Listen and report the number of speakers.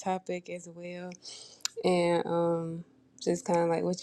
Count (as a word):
one